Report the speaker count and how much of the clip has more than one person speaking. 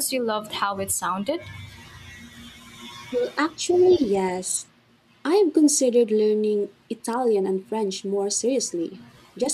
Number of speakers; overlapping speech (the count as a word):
two, no overlap